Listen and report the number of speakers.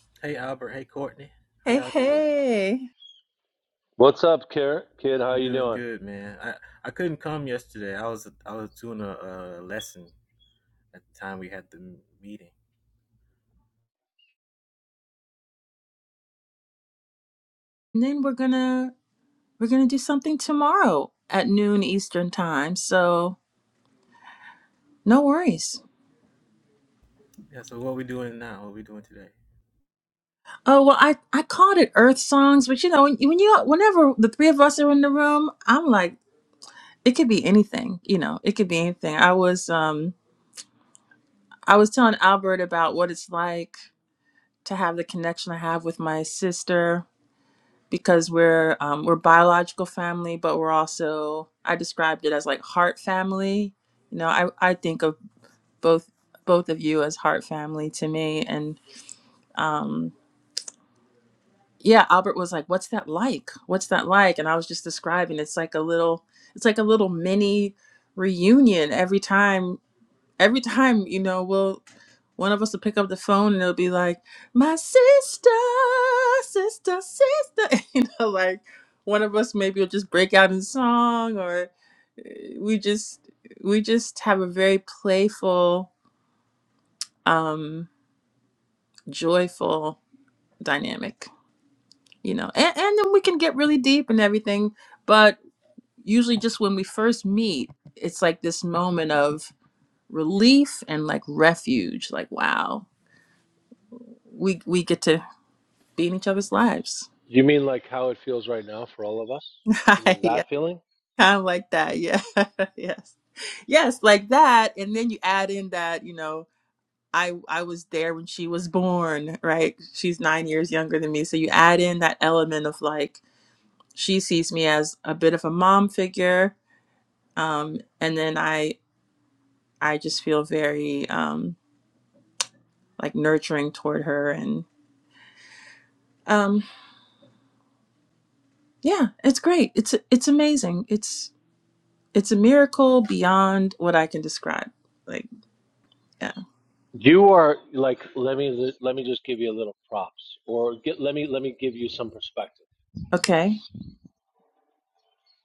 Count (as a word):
three